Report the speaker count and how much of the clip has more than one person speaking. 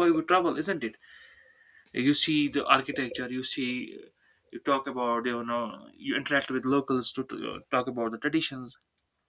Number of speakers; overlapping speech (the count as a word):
one, no overlap